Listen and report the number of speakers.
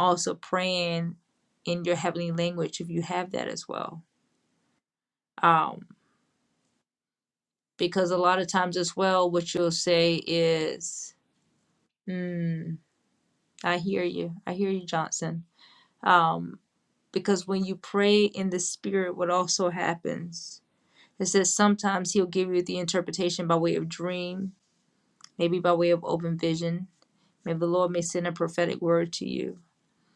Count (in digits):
1